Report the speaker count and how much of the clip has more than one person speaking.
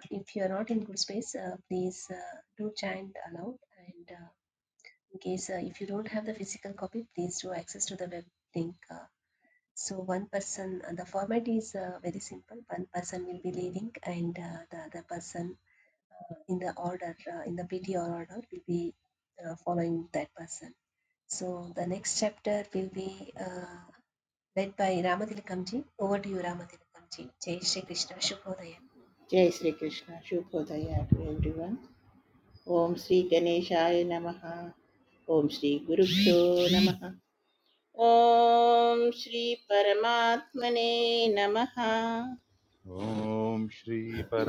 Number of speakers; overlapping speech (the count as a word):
three, no overlap